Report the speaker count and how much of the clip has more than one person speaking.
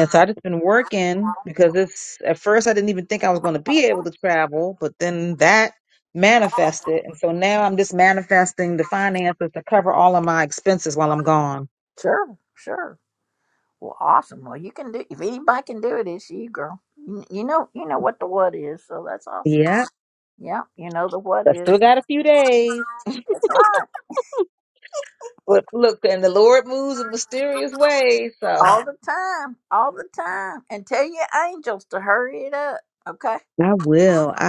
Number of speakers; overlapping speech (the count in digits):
2, about 1%